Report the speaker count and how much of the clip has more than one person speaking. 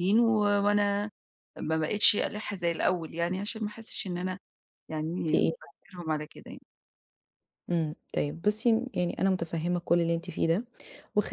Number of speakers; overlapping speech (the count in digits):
2, about 3%